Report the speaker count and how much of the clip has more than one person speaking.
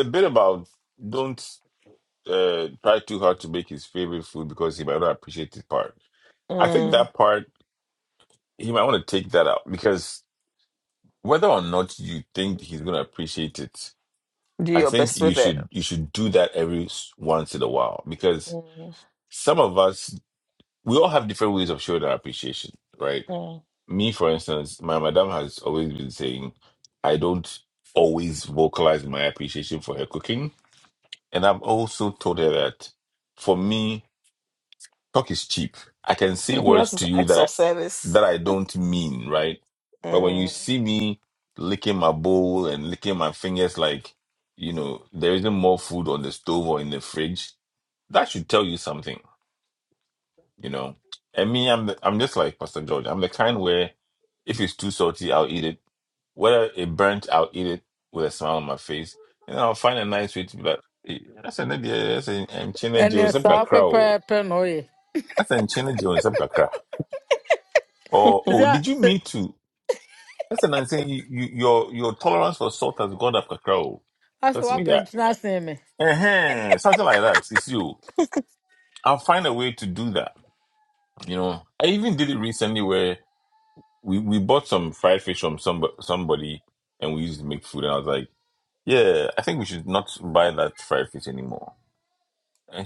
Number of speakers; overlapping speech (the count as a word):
three, about 5%